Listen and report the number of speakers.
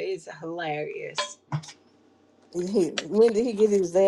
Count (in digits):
2